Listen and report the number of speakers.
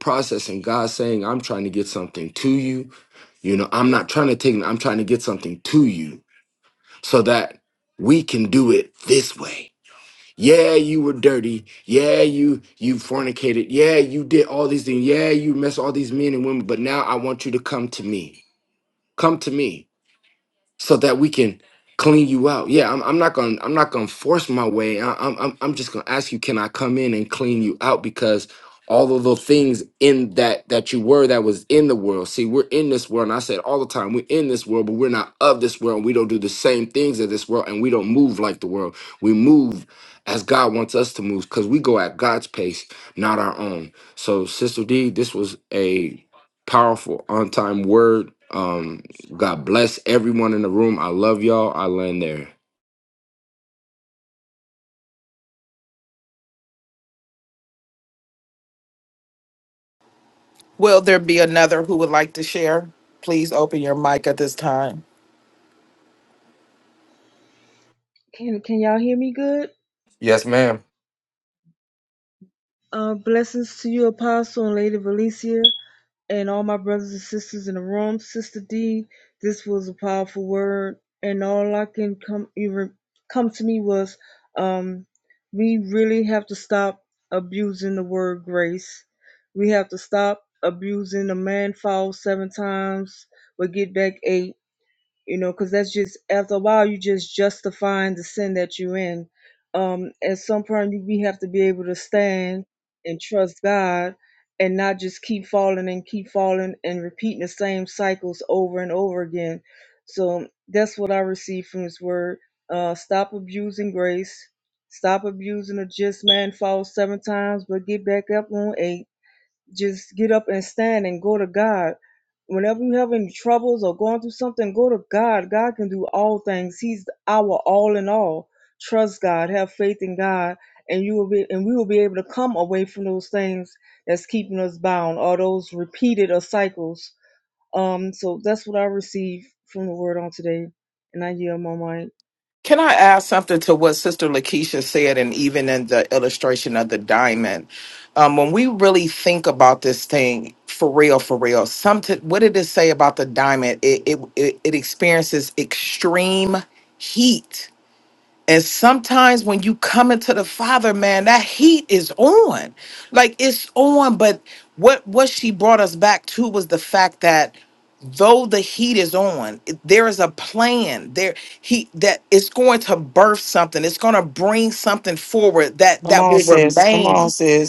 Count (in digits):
4